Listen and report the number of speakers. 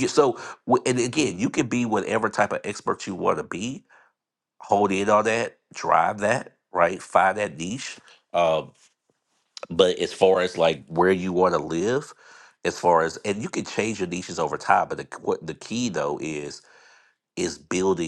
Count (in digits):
1